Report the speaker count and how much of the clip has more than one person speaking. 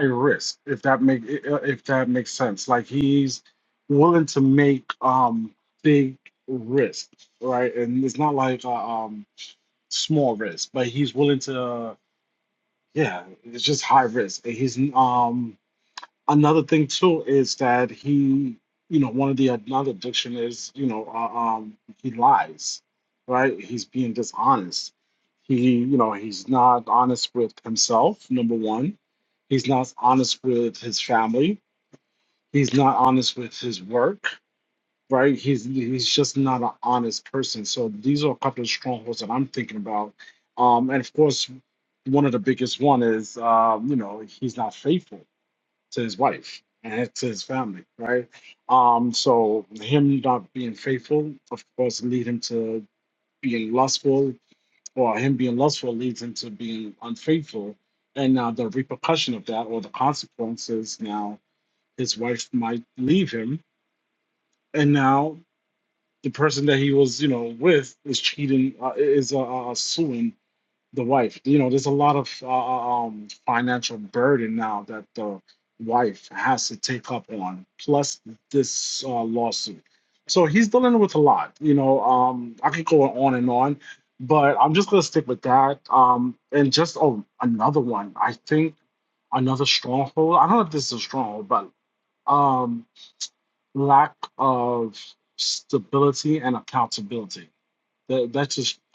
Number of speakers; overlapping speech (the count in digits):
1, no overlap